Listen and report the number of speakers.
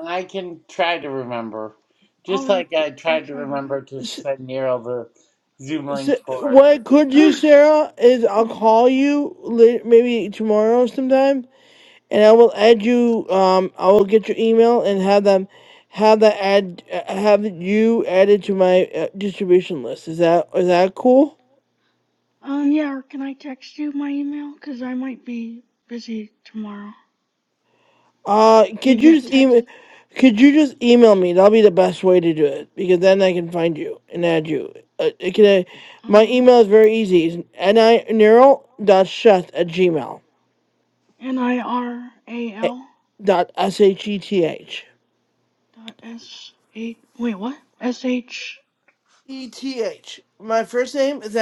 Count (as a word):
three